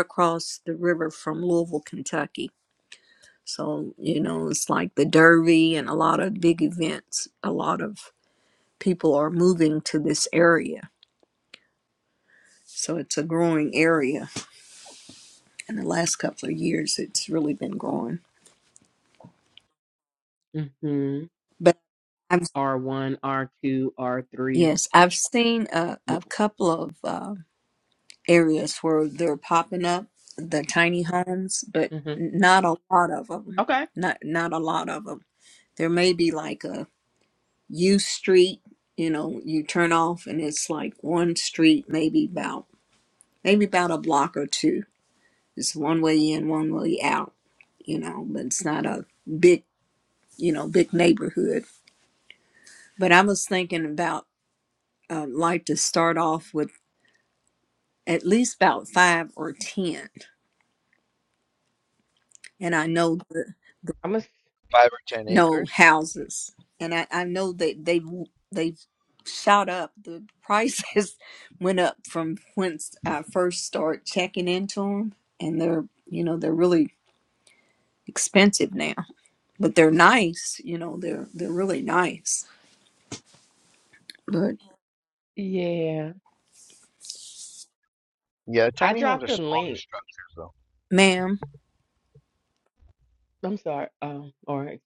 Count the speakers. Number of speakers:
three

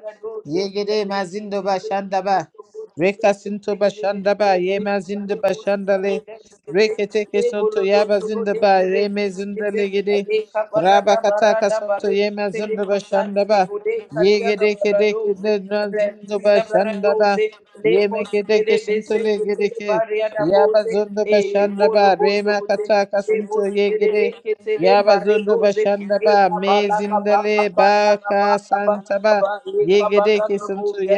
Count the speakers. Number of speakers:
two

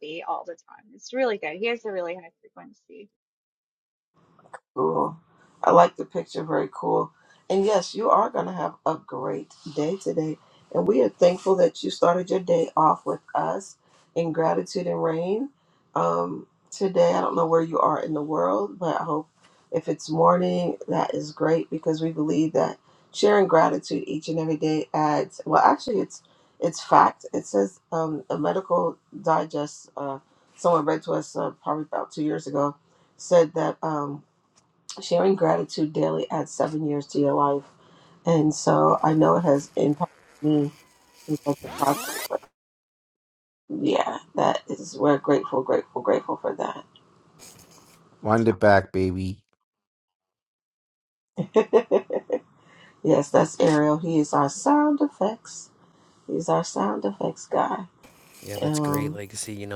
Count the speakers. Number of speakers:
four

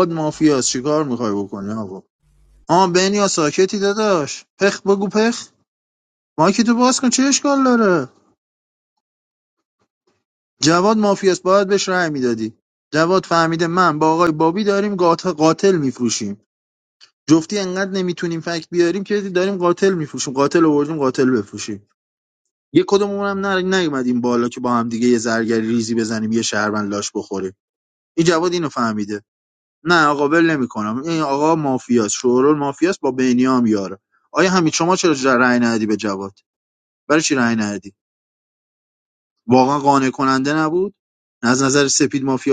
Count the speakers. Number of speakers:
one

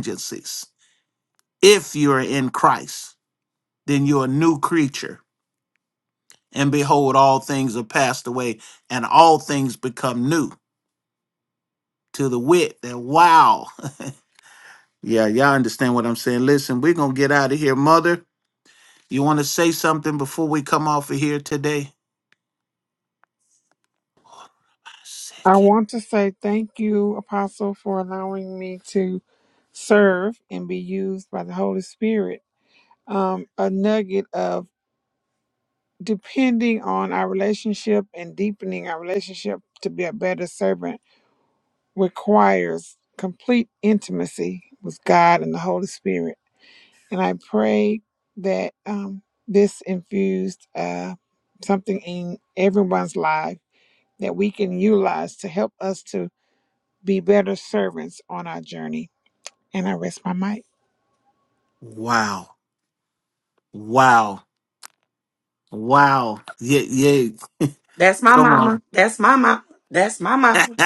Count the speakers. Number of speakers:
three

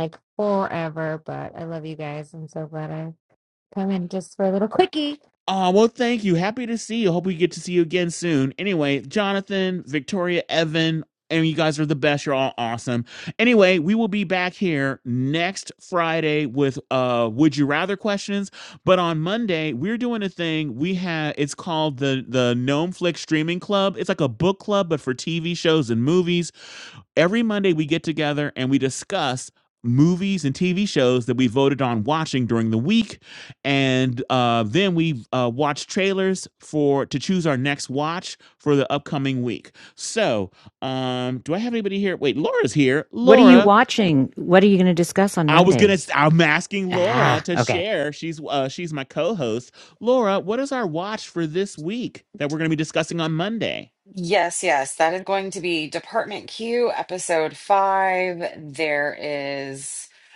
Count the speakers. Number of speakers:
four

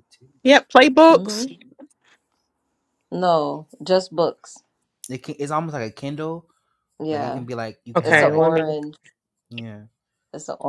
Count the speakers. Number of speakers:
three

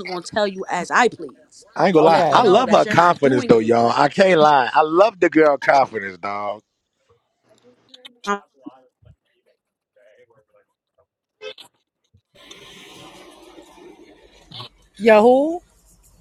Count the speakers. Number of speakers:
three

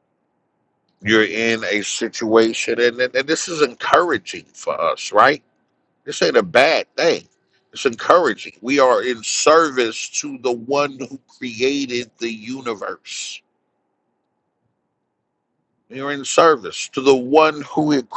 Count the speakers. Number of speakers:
one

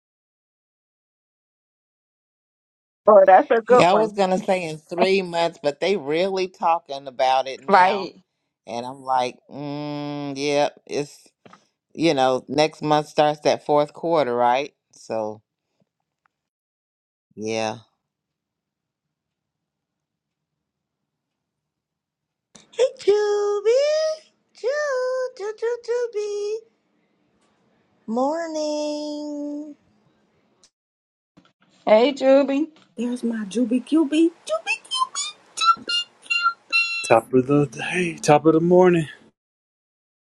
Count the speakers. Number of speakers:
five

